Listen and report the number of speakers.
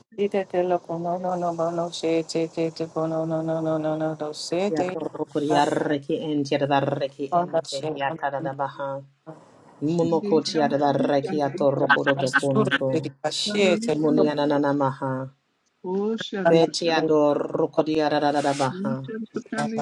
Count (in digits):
3